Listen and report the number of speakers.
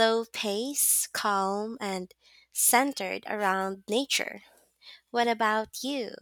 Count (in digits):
1